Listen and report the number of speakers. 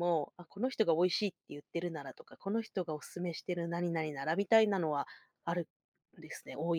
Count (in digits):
1